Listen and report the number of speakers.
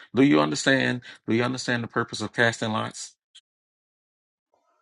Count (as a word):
one